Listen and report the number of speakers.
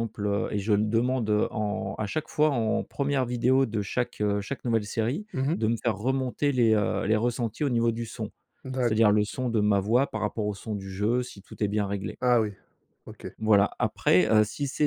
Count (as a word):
two